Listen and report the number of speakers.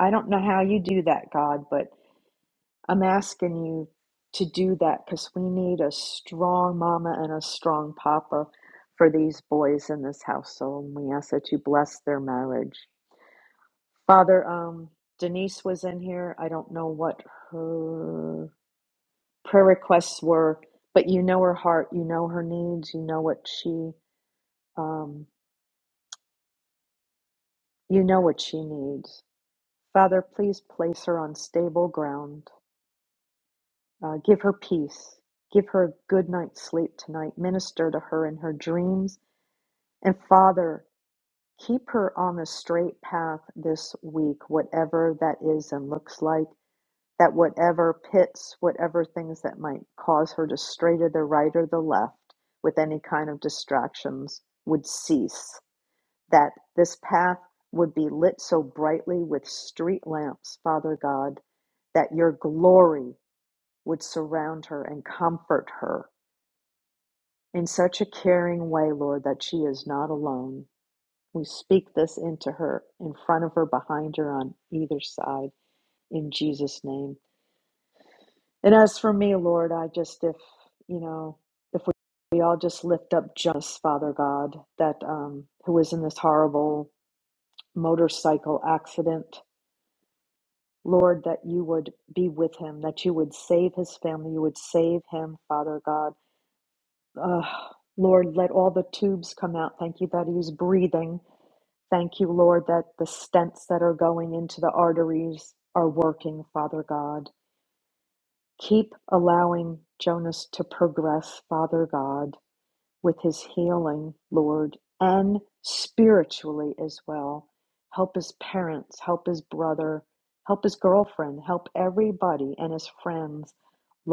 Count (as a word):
one